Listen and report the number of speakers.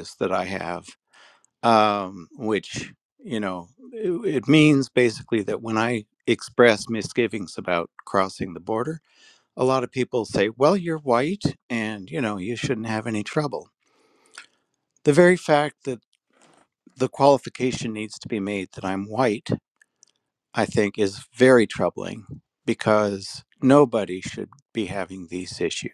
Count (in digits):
1